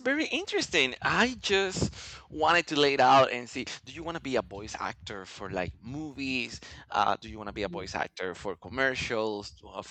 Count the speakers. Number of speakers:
1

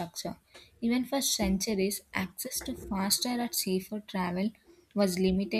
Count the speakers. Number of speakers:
1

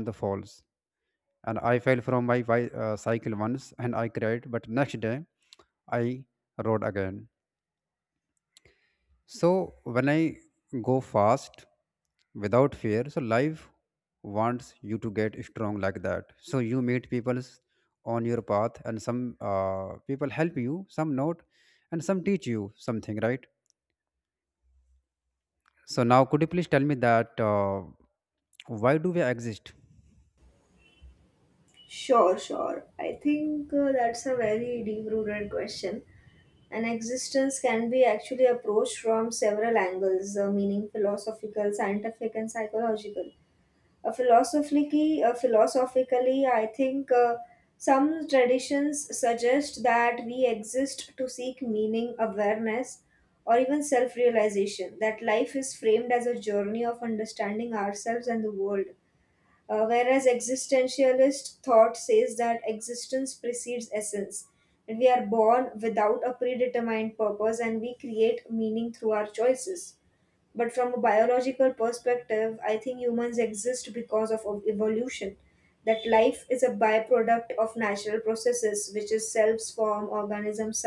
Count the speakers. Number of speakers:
2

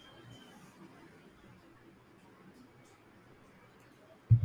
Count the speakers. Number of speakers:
0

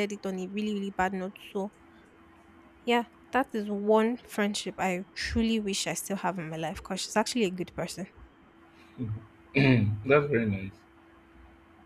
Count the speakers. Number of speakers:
2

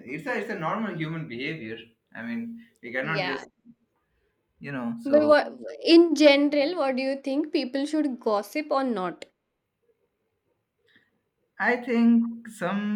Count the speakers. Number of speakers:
2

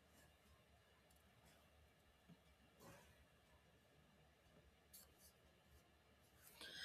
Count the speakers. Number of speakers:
0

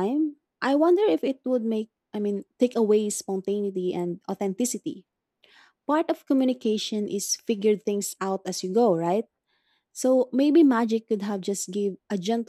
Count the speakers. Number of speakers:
1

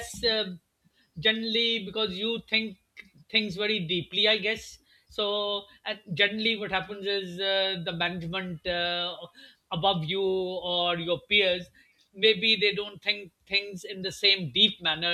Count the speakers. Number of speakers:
1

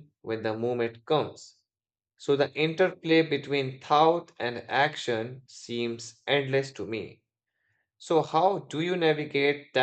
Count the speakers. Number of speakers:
1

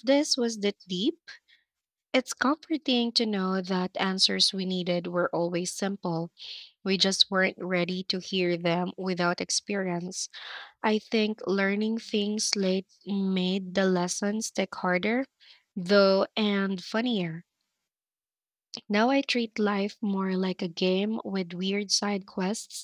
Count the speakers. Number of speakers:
1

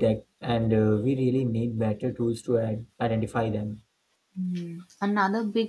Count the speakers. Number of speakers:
2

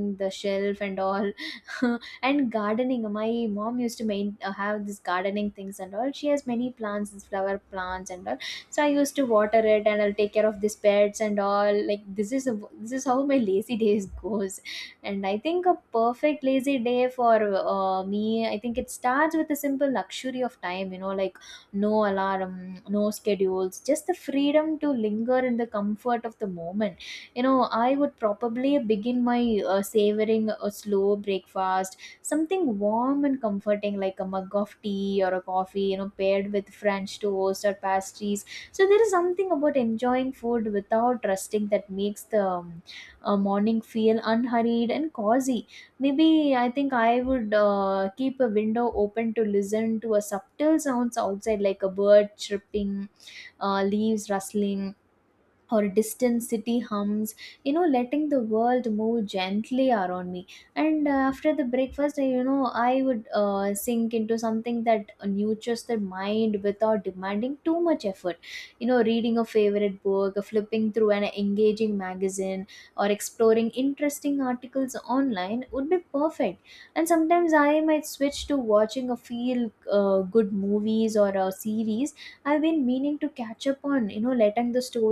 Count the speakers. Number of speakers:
1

